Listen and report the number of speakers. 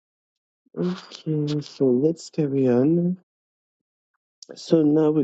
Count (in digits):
1